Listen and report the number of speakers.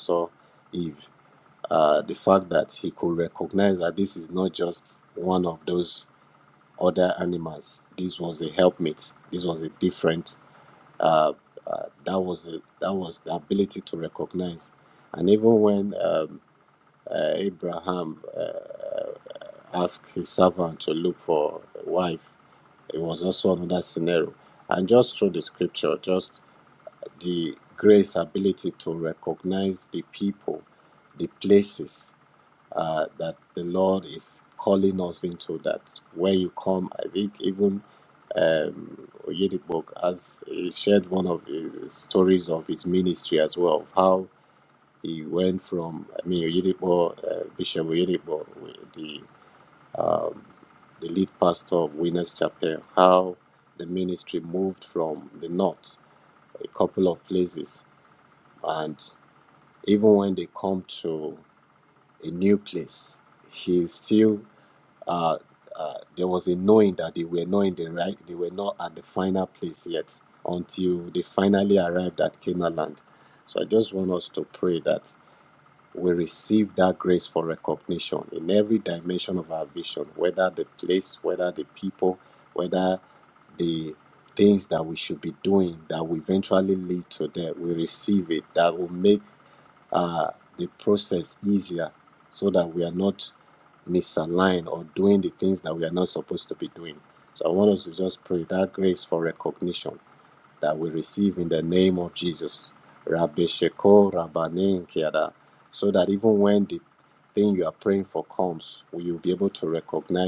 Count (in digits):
1